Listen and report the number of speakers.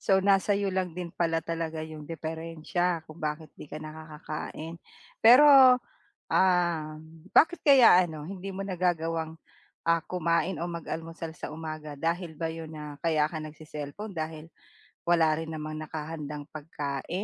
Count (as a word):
one